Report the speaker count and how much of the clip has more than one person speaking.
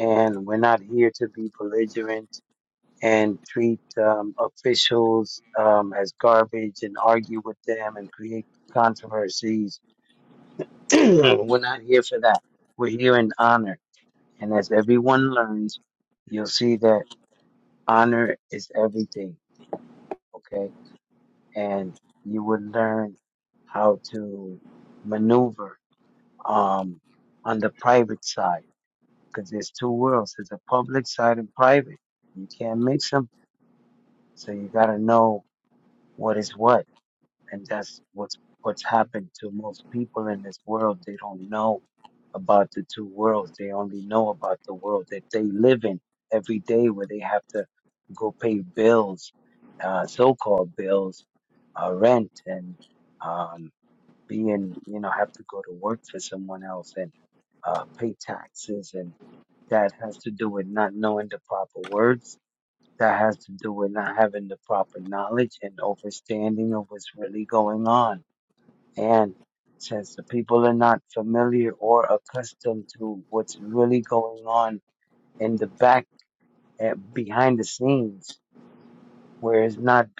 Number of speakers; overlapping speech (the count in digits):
1, no overlap